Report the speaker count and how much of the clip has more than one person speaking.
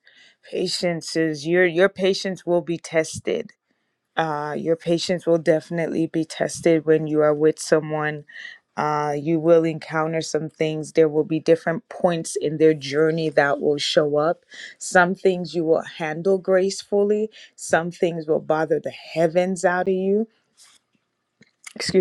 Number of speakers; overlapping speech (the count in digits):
1, no overlap